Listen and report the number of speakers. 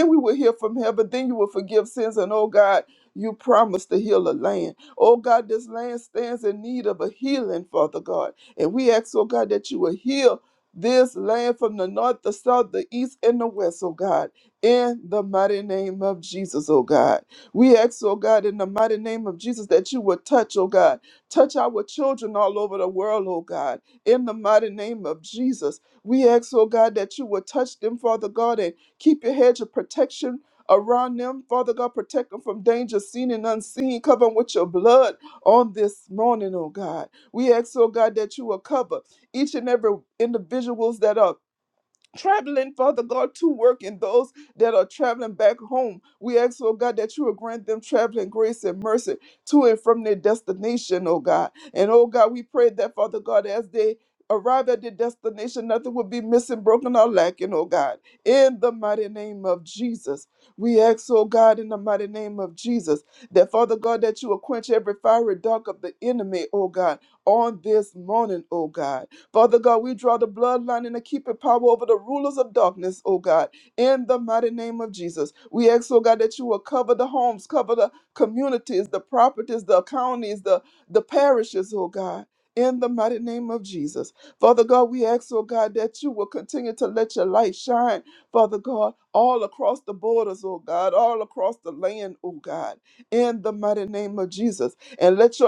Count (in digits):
1